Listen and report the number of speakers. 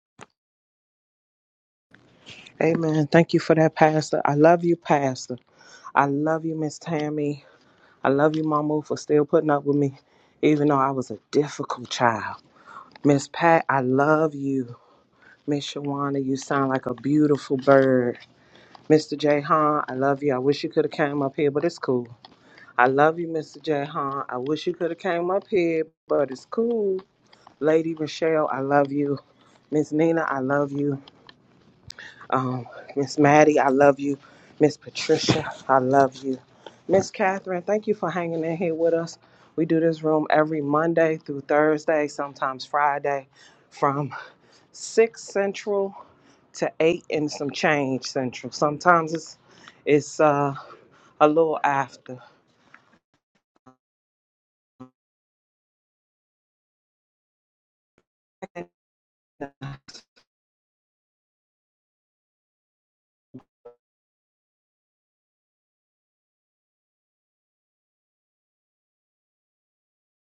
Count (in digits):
1